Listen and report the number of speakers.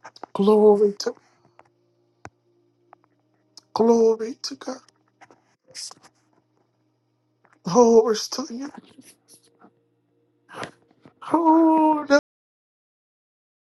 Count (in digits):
1